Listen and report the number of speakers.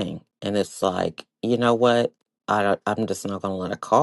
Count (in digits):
1